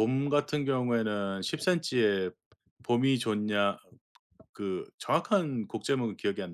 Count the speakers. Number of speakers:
1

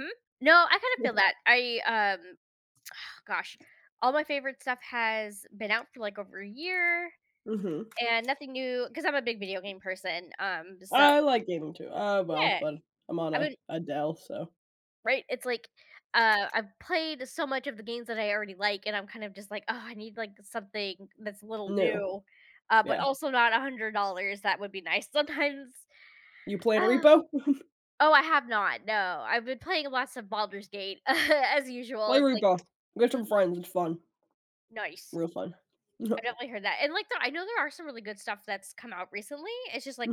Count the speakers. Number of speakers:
2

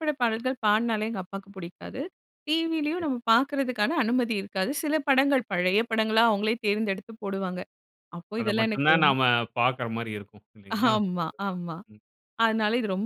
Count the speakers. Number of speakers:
2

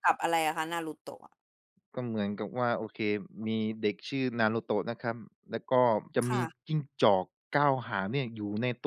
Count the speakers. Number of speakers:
2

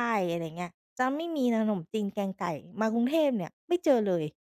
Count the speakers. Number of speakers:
1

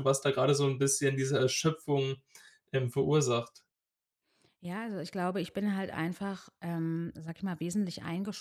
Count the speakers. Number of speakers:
2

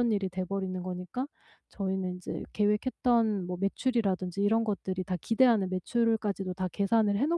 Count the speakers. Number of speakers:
1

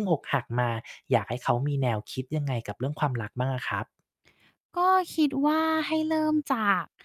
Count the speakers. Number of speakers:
2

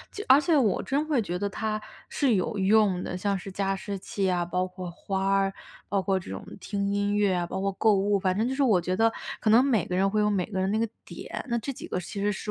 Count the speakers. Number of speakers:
1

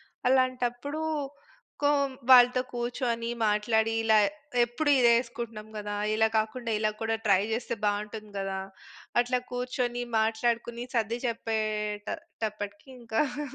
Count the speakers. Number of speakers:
1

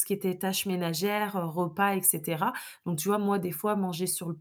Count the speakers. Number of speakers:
1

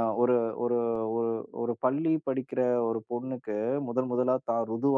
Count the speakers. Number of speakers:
1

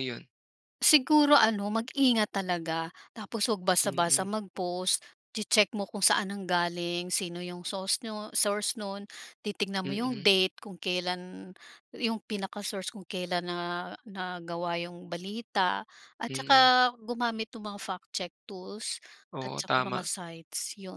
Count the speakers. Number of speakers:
2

